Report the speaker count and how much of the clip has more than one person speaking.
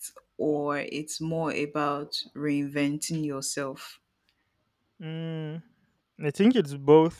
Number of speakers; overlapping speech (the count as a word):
two, no overlap